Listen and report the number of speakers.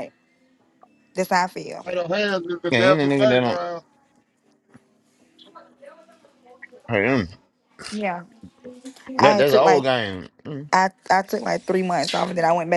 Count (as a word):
three